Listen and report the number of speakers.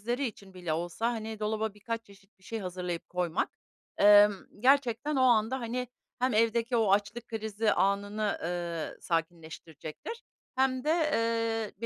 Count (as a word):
one